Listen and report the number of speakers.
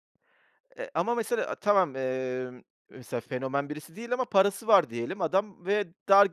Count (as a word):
one